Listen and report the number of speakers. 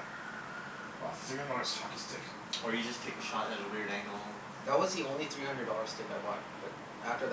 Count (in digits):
3